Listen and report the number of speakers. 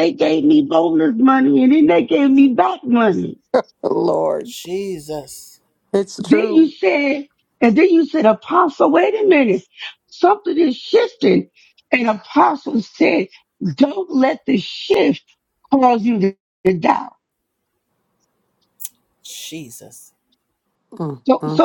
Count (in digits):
3